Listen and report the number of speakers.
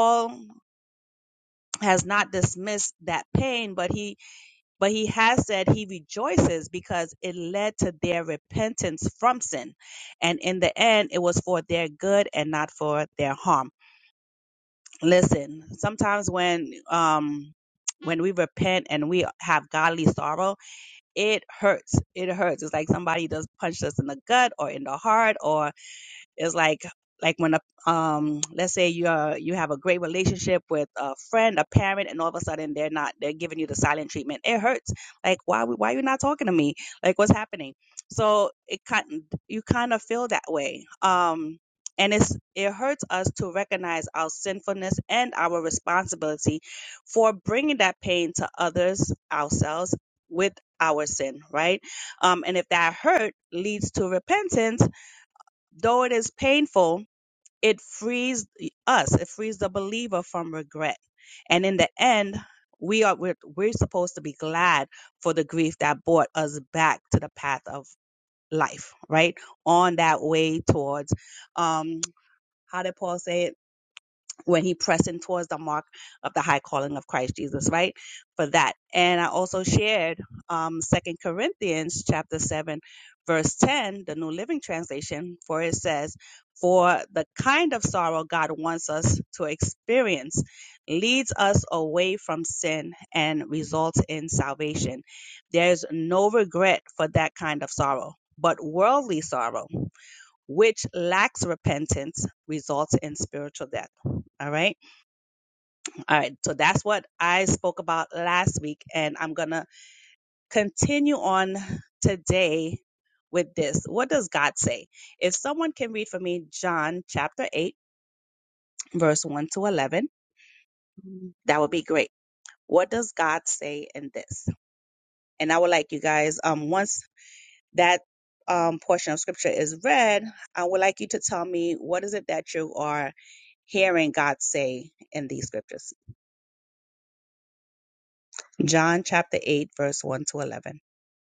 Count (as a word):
one